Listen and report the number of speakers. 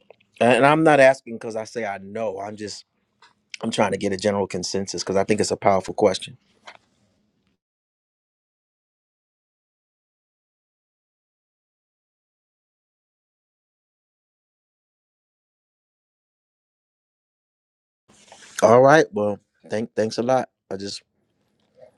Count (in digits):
1